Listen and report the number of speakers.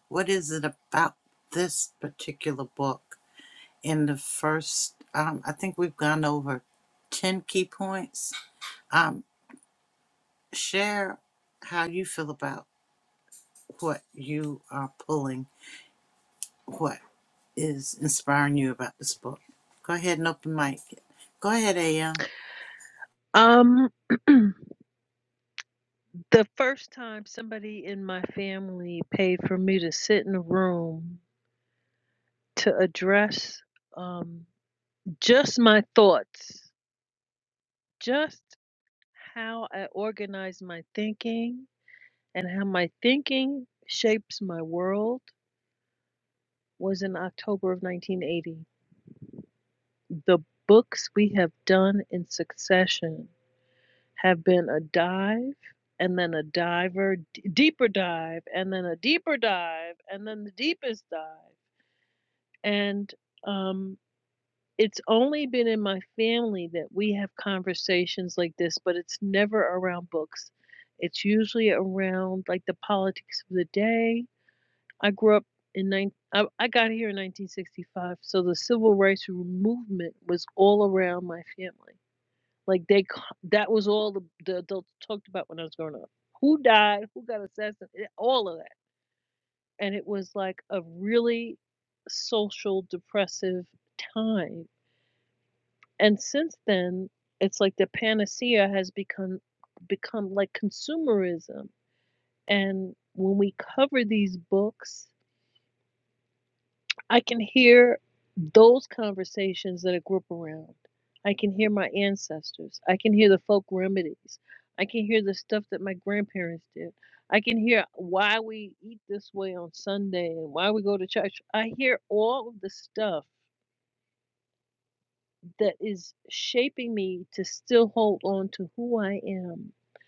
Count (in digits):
2